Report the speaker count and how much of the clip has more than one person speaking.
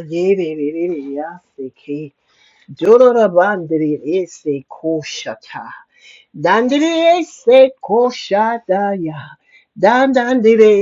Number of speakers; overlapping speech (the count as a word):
one, no overlap